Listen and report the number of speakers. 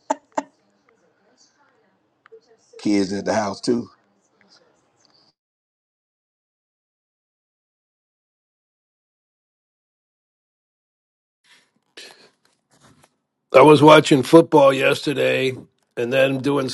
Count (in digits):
2